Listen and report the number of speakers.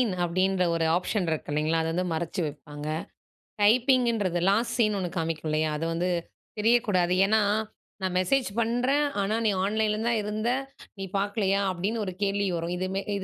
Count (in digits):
1